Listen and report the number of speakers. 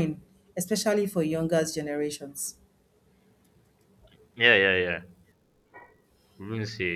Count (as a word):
two